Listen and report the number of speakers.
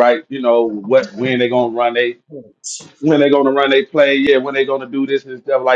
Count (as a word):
one